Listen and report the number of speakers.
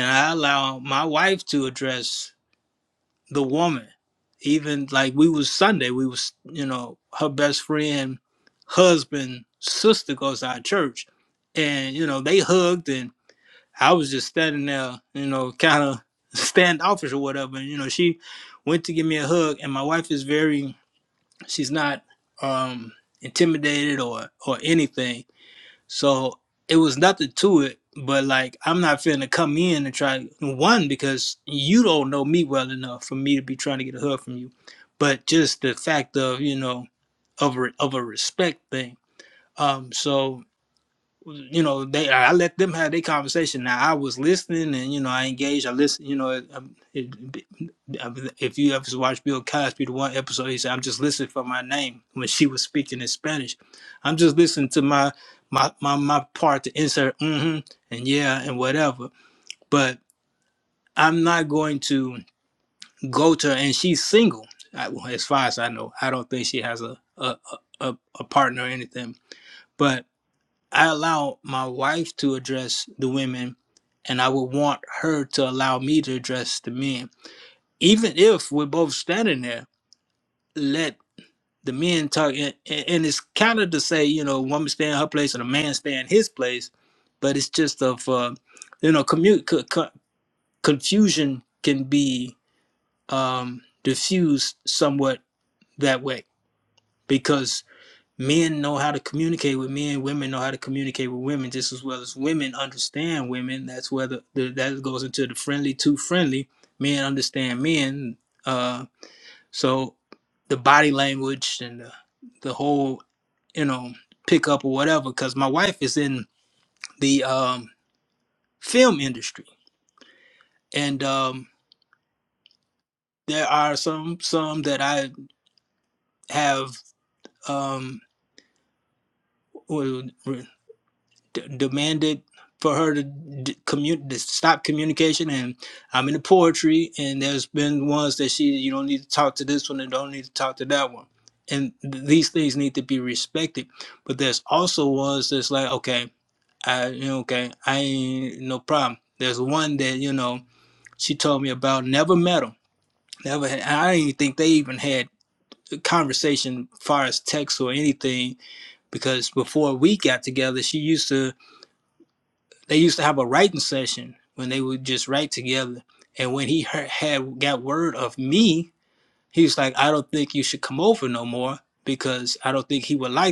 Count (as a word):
one